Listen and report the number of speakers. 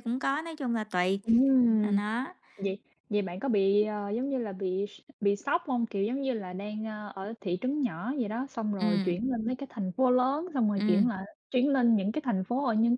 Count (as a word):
two